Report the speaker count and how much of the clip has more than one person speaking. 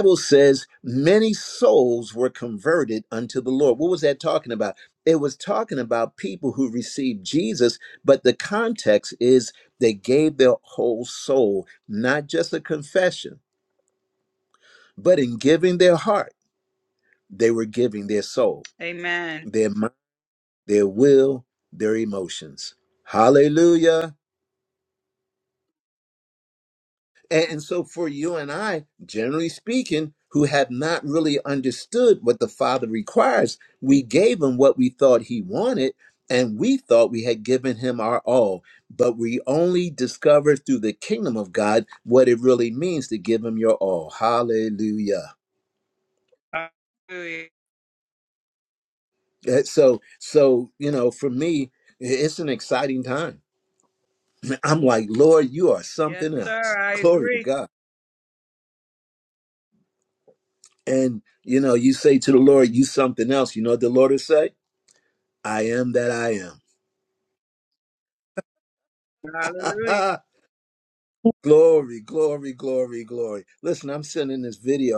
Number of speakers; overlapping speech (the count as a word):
two, about 2%